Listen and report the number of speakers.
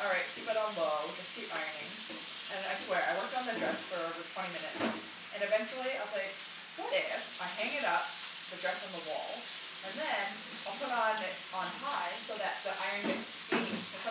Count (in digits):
1